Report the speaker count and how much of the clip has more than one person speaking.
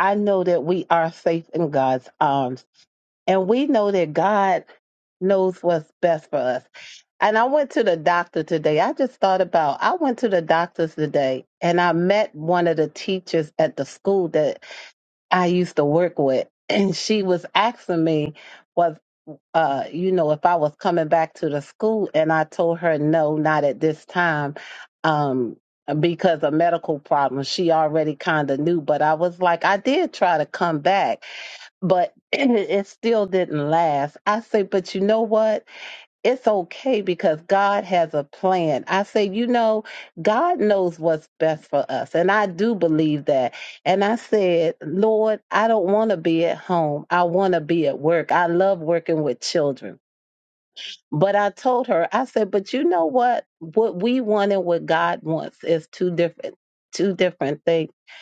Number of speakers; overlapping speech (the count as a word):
one, no overlap